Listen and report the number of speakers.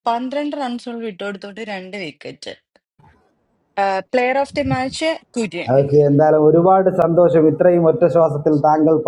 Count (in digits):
2